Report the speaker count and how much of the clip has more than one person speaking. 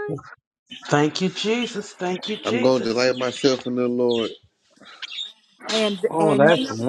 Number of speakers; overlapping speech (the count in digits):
3, about 21%